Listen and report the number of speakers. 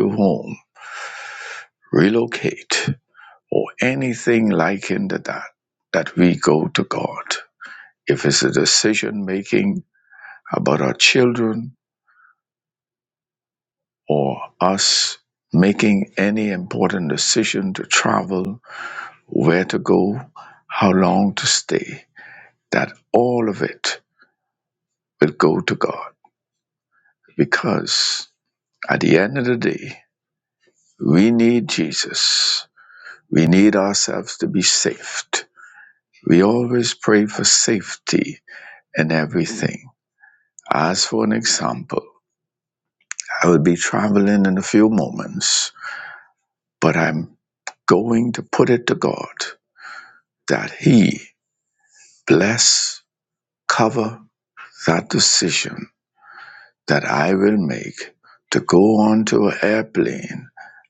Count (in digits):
1